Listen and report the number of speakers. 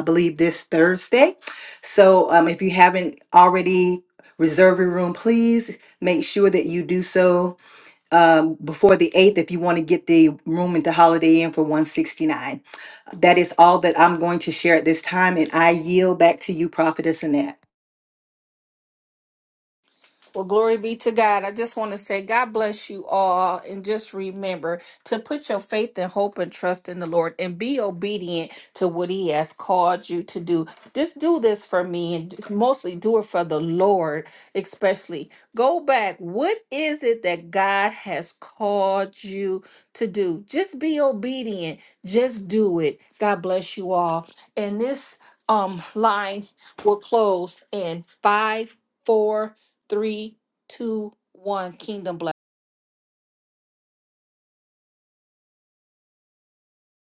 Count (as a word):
two